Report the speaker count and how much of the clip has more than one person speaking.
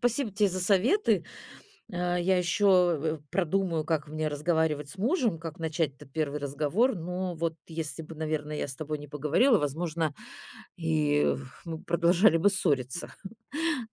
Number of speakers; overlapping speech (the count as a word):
one, no overlap